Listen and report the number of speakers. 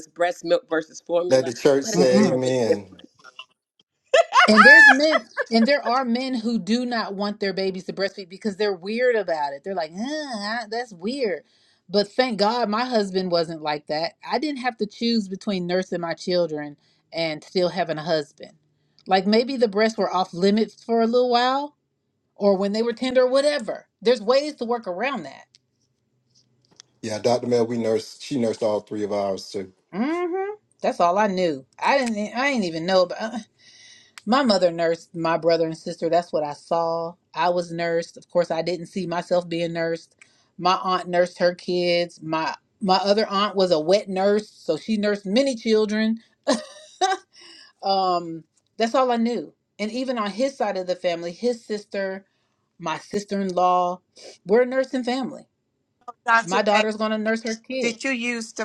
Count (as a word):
four